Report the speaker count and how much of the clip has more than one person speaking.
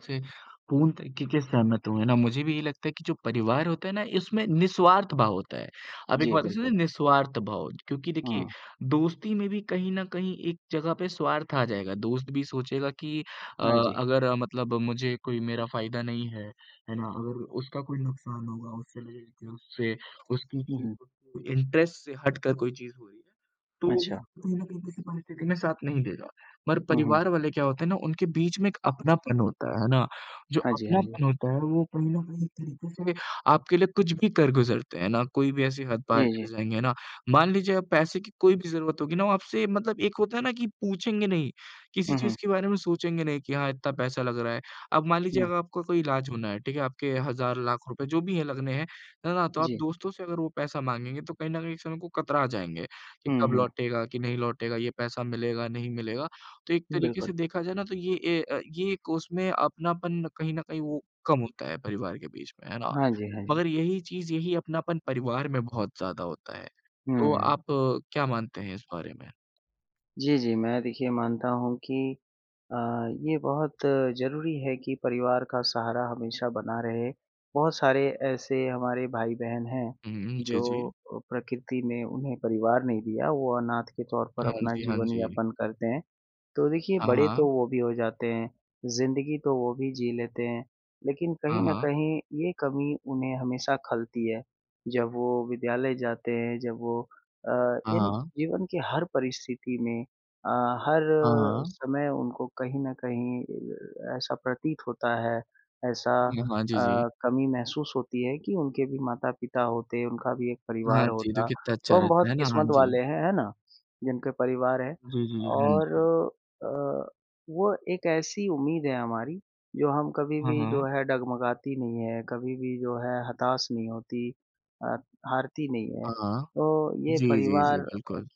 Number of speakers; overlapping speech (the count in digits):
2, about 10%